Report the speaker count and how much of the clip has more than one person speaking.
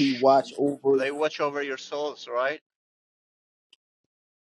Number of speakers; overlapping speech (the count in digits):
2, about 7%